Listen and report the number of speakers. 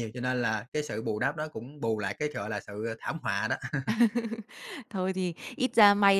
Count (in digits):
2